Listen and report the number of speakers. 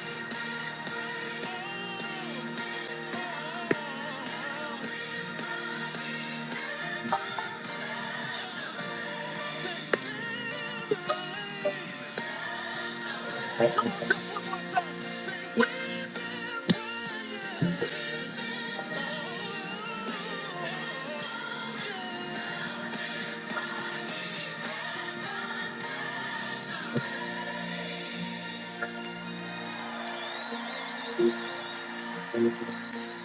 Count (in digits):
0